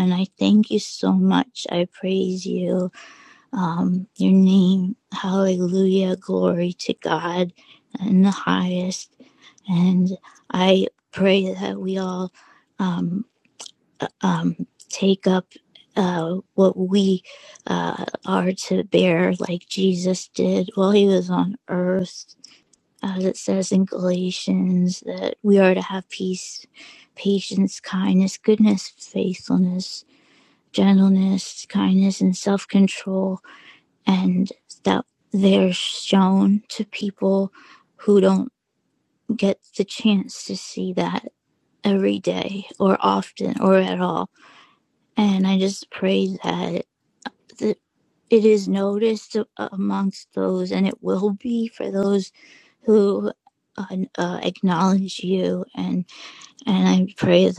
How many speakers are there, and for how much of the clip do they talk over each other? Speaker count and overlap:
1, no overlap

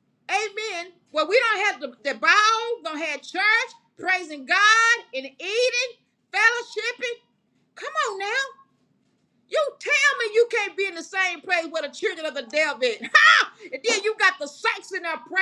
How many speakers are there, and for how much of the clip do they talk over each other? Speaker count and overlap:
1, no overlap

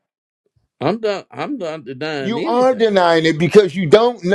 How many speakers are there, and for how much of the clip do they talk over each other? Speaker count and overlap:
2, about 16%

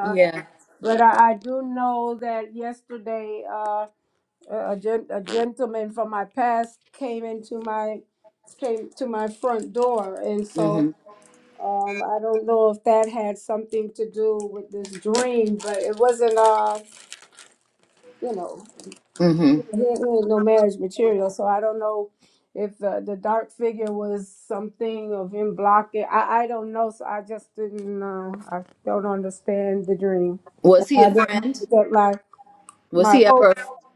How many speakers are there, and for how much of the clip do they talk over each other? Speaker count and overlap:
2, about 5%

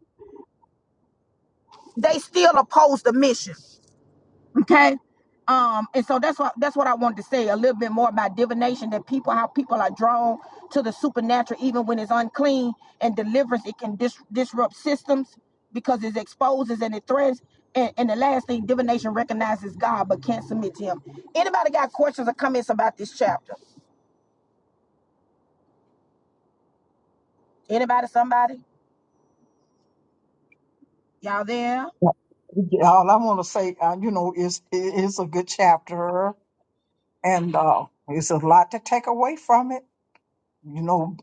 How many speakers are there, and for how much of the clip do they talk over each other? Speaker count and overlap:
2, no overlap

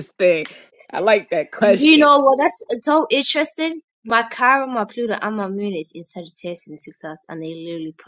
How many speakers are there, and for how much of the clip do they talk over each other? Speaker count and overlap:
2, about 6%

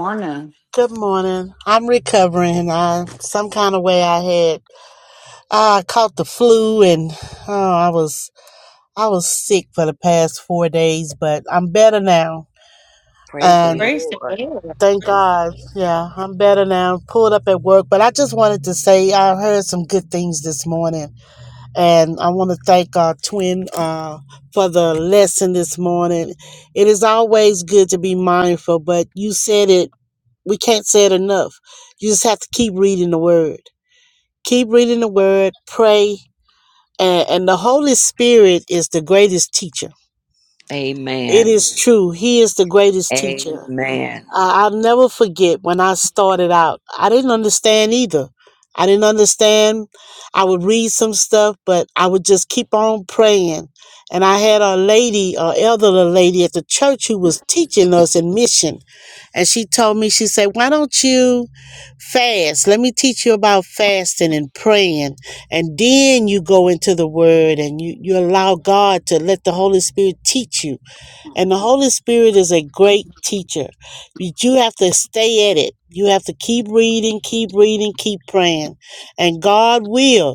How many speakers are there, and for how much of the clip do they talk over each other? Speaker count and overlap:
3, about 2%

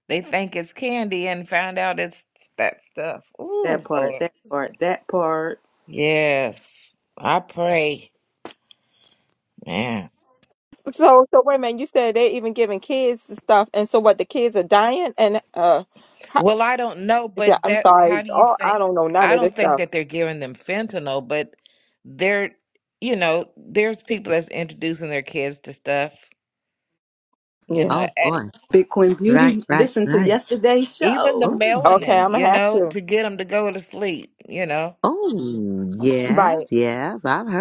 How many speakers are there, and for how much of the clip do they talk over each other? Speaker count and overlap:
4, about 18%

